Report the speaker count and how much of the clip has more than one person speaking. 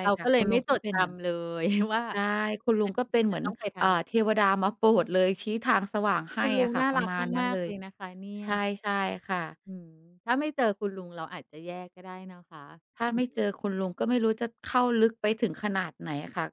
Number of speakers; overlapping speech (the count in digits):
2, about 19%